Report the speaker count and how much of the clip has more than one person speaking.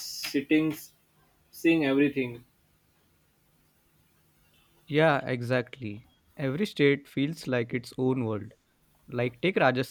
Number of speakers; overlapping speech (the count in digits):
2, no overlap